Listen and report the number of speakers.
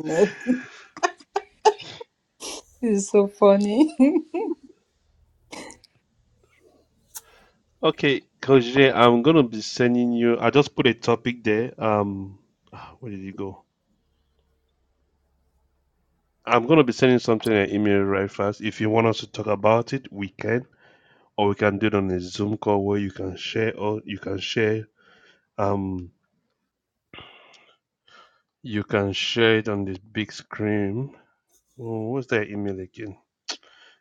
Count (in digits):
2